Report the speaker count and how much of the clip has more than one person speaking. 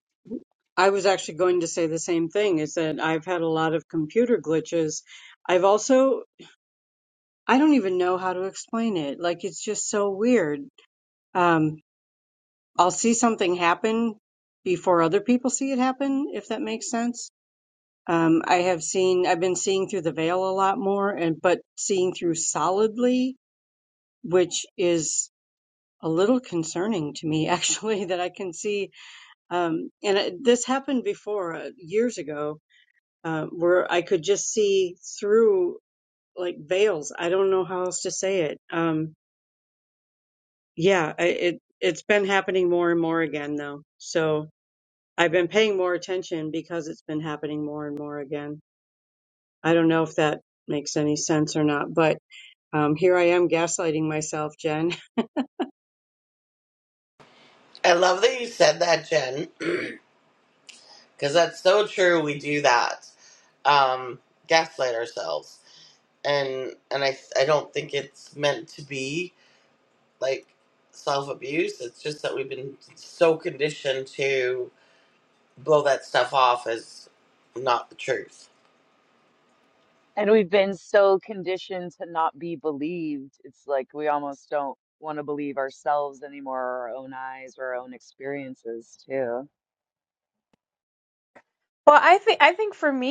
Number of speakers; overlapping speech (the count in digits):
4, no overlap